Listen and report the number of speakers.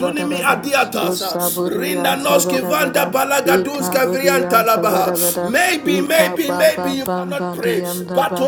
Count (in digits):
2